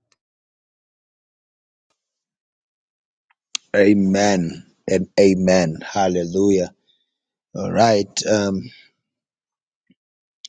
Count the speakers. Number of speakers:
one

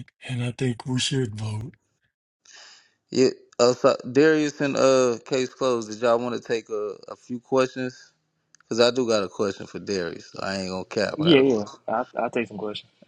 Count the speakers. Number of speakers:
three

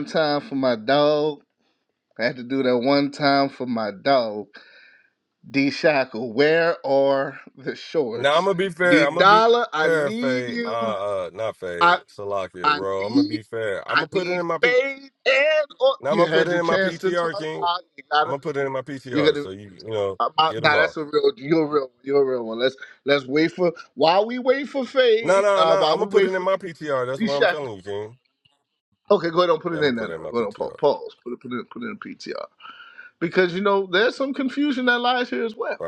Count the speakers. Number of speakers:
two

